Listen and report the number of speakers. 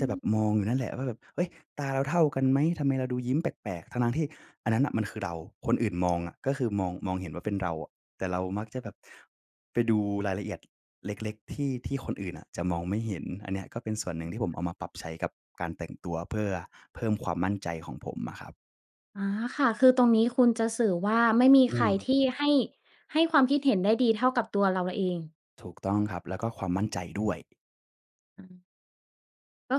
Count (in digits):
2